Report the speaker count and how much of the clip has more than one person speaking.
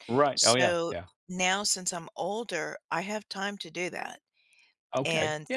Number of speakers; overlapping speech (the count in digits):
2, about 20%